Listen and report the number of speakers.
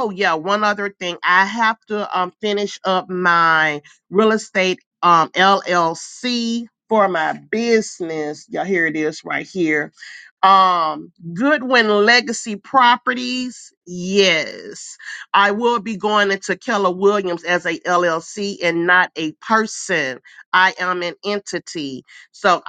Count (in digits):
1